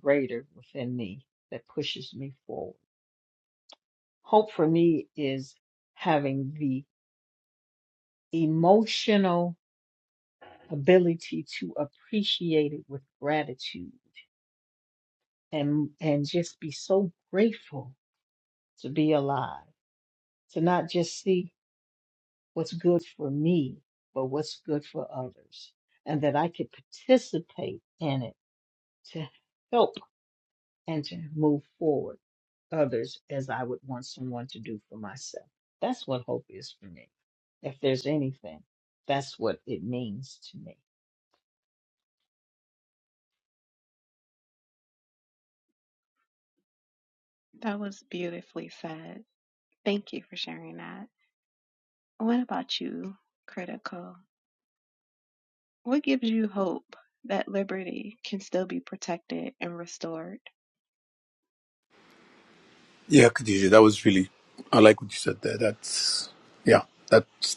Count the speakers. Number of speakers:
3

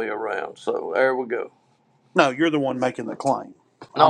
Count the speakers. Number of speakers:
2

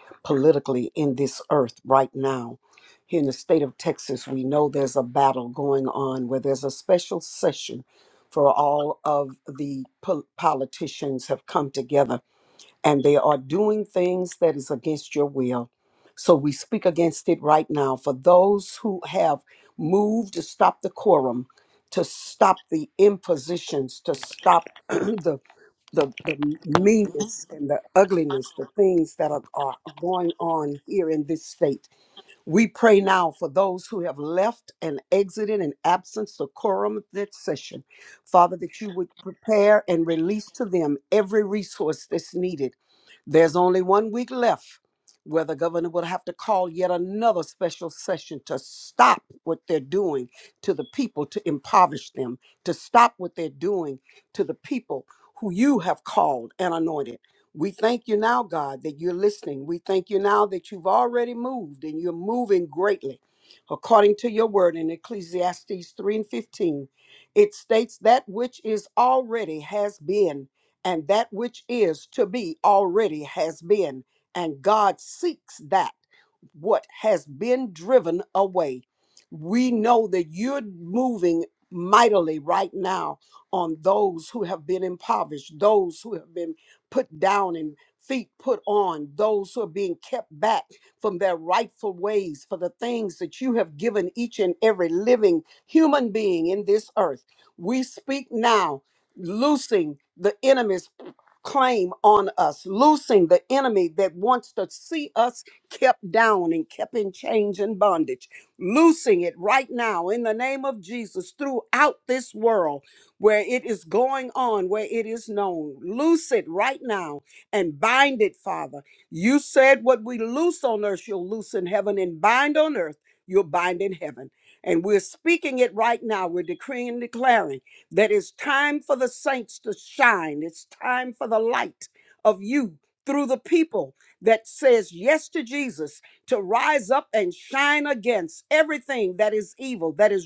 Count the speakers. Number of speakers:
1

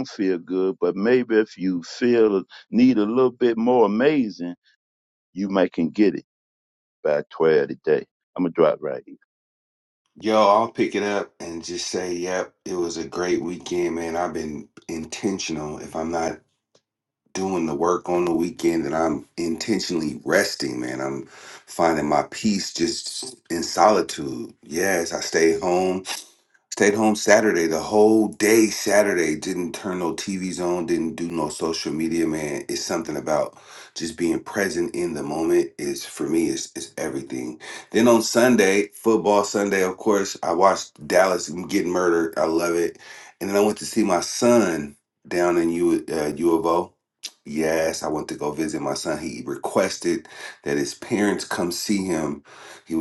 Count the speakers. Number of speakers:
2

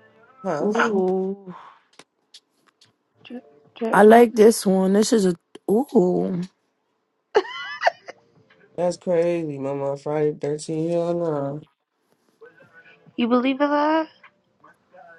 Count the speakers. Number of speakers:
3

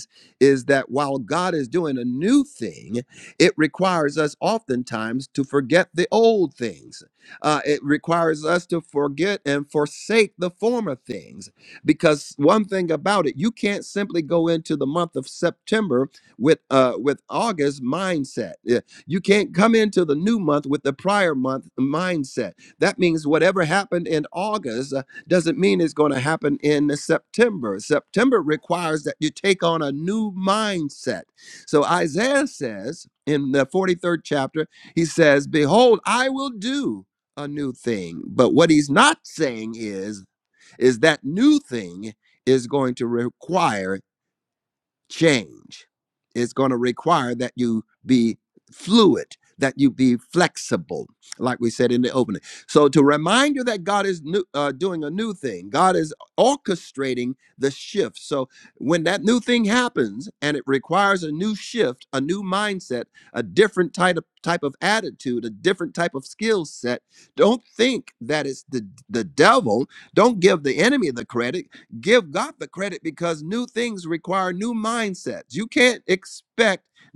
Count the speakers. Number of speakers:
1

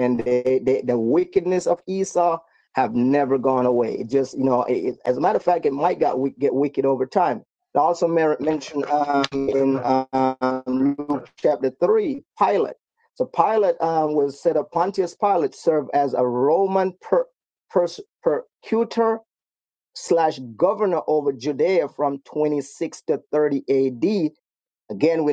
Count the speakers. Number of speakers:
1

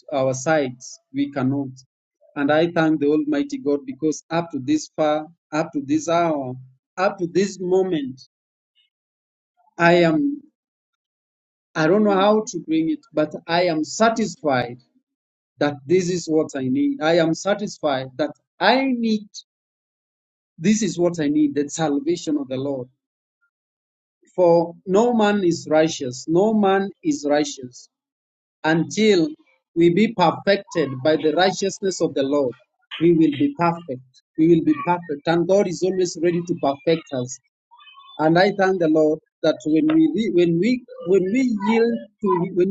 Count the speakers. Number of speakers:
1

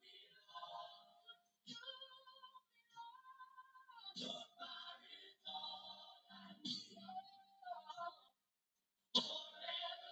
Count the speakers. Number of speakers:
0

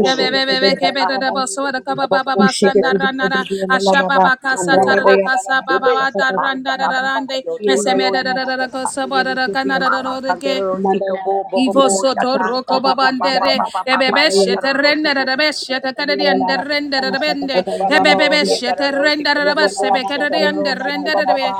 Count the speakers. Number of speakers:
3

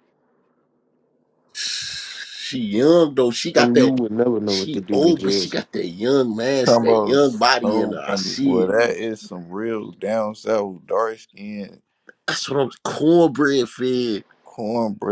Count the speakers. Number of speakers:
3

